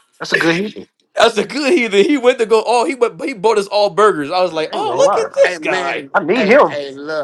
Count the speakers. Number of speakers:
3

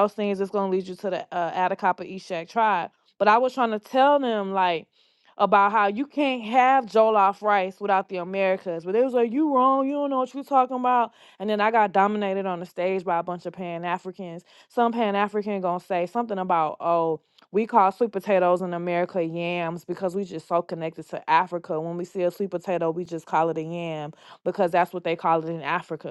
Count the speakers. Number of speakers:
1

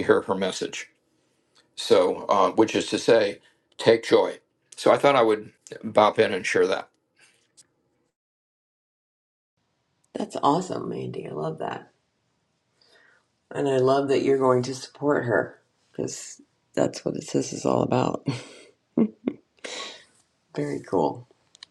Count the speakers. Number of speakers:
2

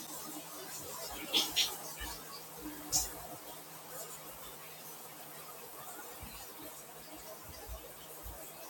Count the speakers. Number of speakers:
0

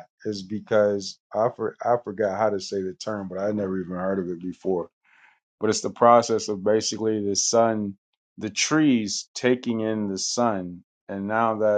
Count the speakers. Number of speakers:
1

